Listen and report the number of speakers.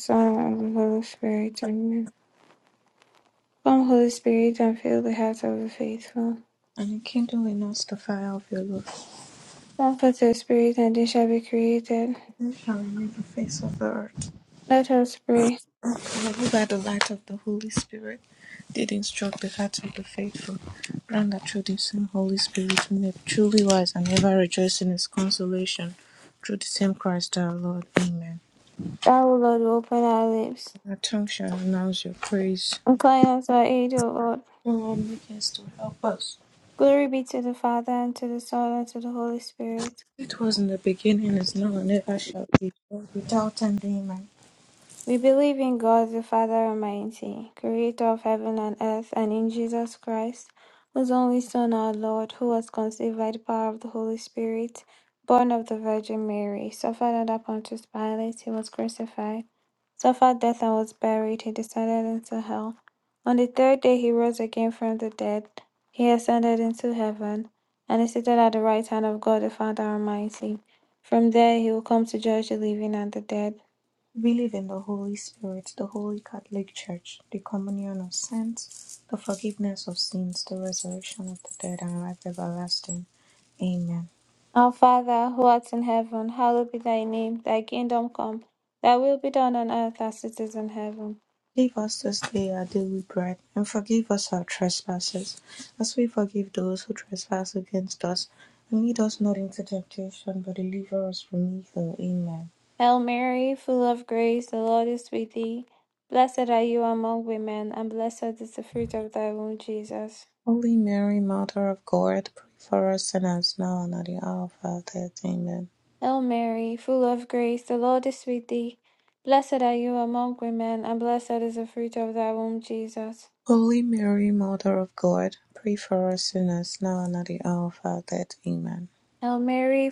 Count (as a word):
two